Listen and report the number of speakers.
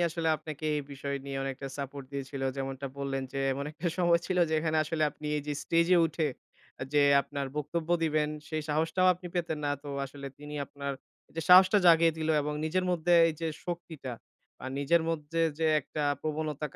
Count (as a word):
one